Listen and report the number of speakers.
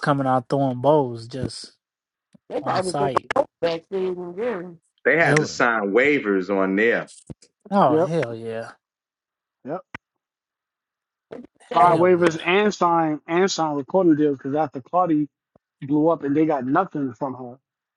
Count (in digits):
4